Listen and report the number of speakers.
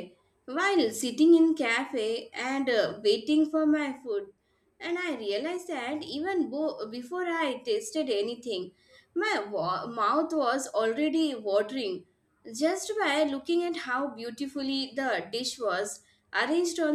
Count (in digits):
1